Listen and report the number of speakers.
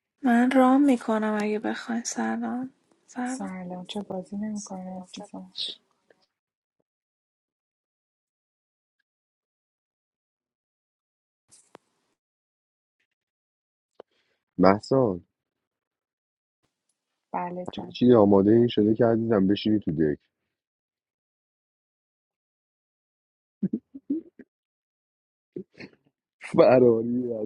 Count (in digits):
3